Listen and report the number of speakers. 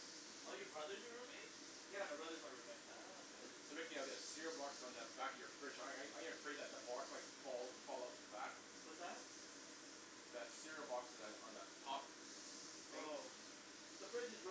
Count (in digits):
3